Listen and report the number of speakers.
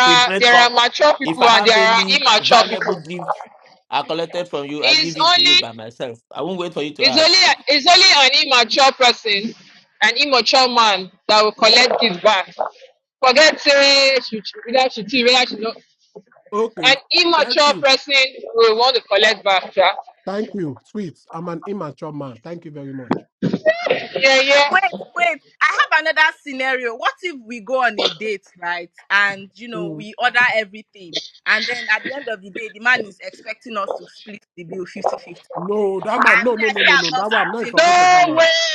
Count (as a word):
four